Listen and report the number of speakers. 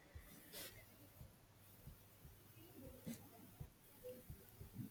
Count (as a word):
zero